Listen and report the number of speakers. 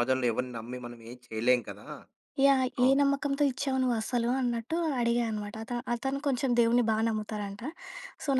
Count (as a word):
two